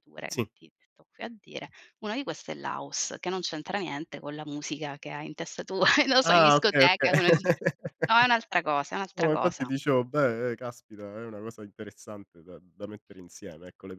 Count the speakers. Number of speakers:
two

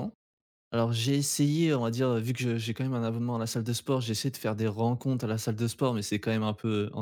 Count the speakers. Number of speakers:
one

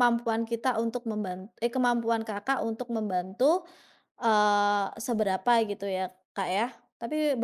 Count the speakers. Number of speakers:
one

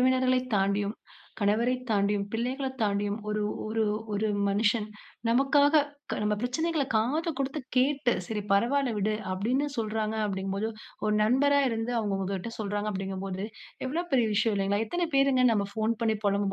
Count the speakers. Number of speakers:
one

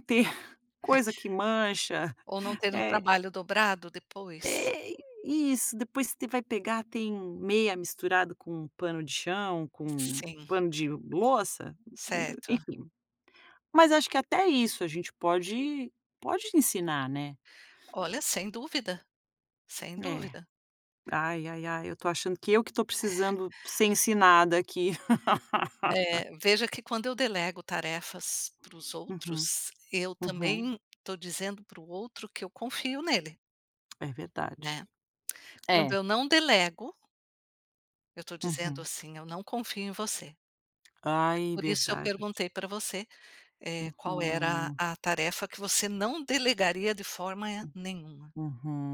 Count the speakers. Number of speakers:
two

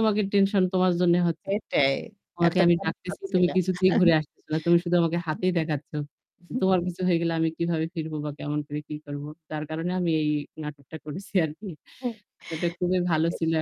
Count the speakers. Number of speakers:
two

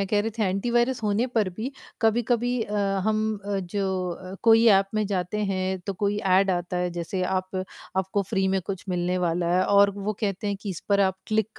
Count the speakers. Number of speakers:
one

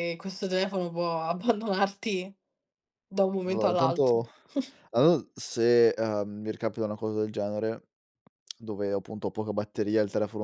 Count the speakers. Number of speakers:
two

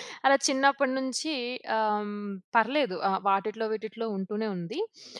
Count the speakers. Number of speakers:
one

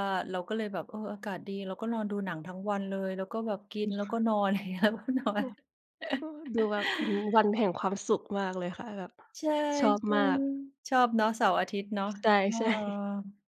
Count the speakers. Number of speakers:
two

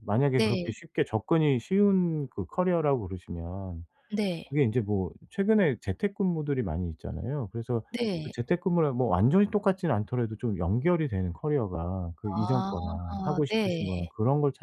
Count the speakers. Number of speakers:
two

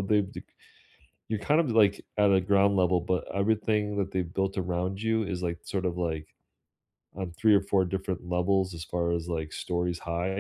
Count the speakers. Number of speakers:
one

